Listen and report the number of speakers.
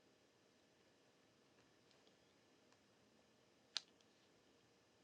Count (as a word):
zero